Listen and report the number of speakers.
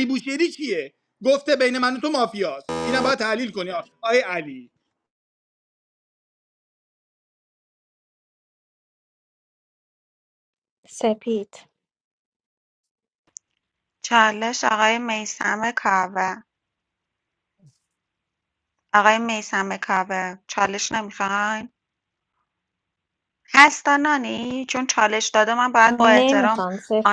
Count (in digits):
3